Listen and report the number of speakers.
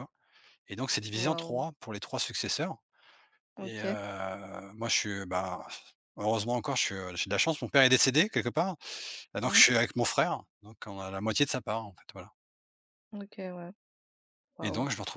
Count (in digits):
2